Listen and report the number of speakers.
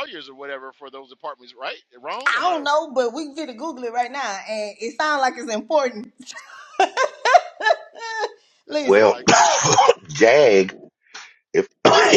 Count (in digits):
3